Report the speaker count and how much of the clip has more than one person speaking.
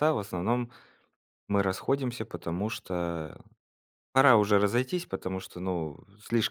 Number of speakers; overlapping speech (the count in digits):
1, no overlap